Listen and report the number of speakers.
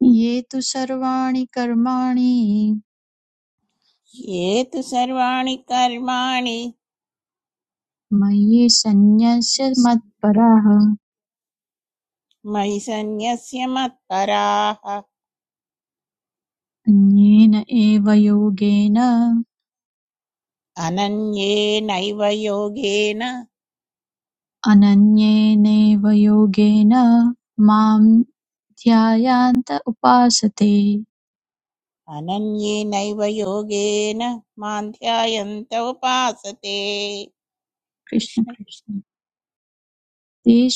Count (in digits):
2